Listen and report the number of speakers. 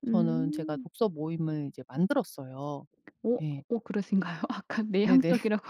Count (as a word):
two